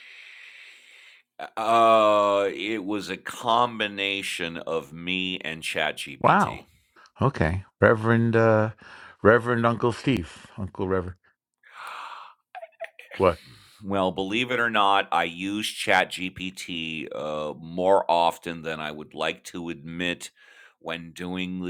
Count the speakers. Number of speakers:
two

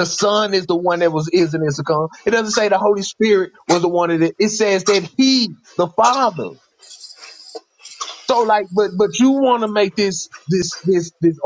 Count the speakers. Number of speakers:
one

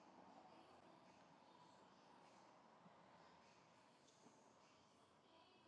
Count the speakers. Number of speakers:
zero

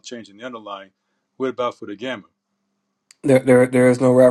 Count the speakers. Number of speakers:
two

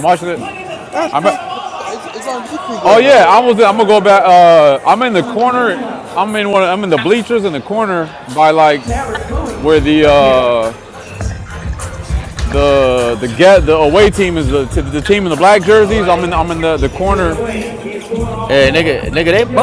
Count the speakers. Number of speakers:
three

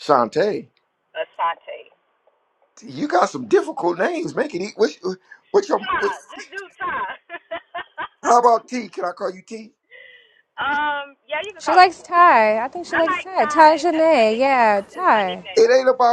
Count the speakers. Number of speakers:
three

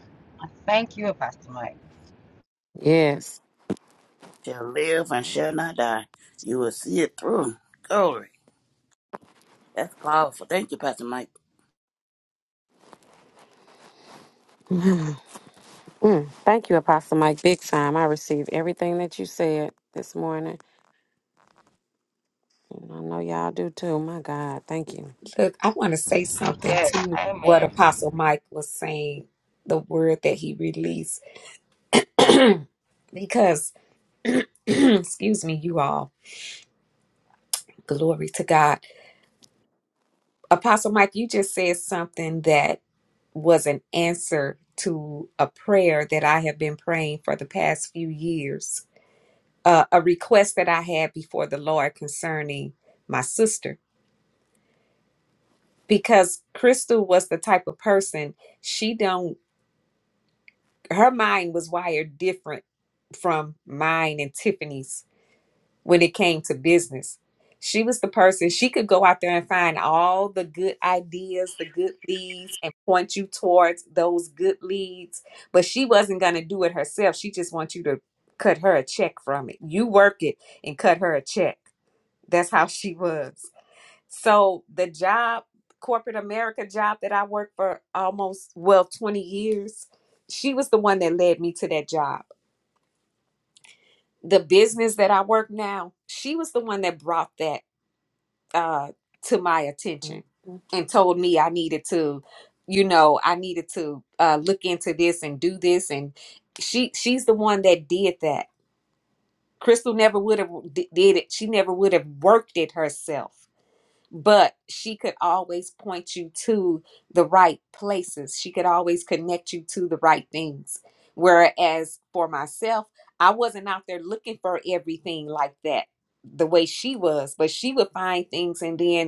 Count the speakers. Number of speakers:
four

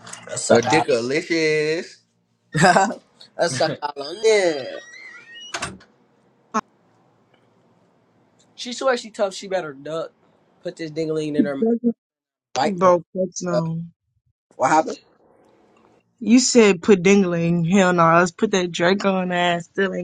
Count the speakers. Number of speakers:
three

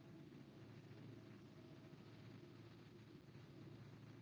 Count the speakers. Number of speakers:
zero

